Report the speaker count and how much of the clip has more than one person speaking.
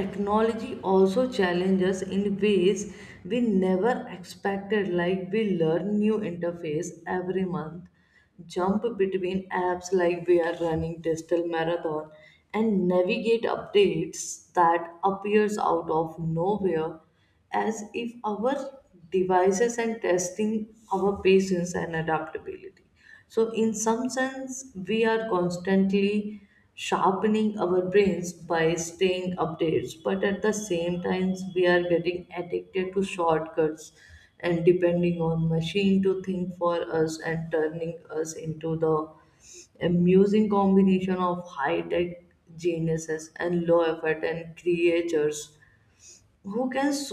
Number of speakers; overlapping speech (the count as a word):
one, no overlap